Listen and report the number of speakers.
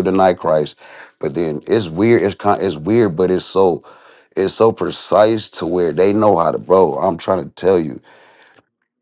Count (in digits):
1